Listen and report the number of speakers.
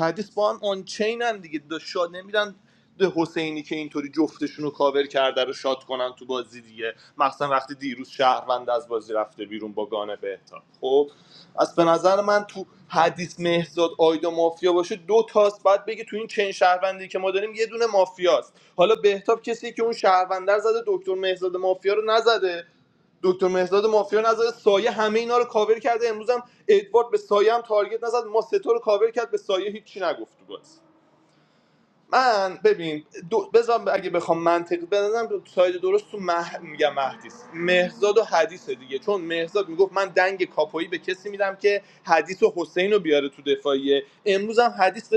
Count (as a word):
one